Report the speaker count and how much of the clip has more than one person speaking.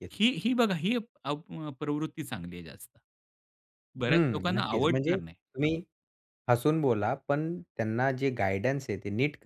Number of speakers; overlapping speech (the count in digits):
2, about 14%